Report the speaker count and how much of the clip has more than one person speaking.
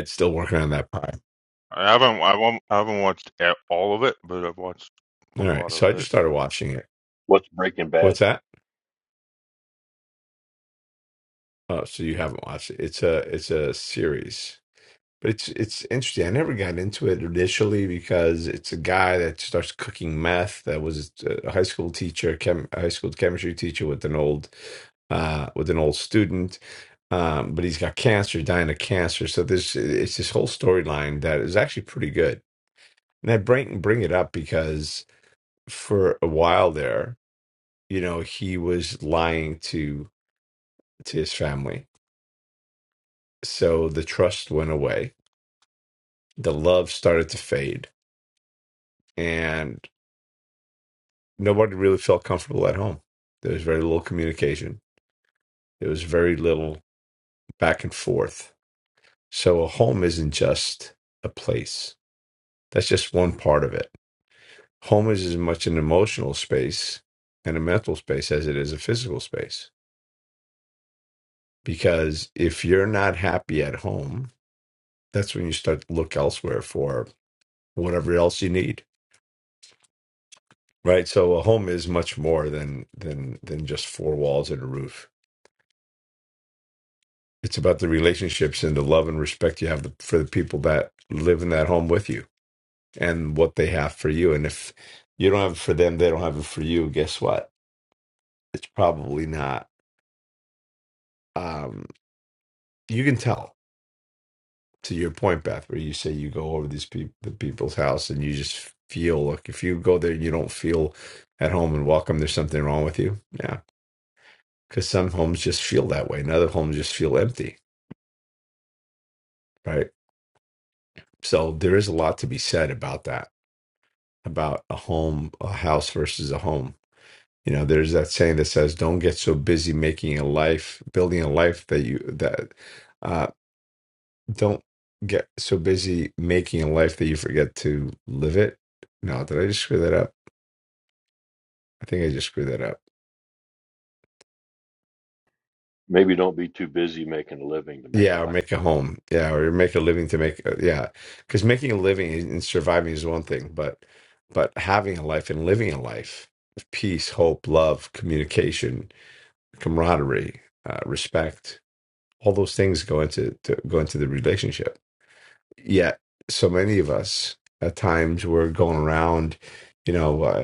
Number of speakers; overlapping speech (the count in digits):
3, about 1%